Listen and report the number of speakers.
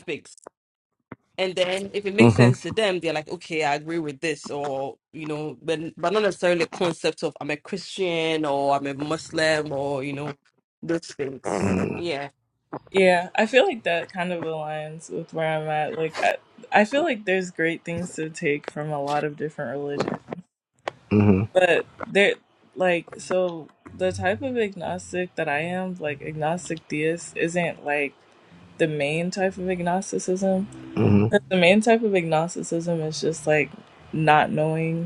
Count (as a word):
three